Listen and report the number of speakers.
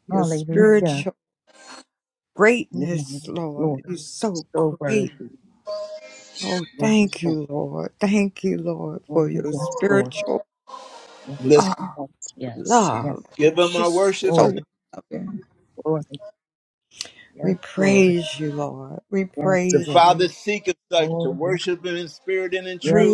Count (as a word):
three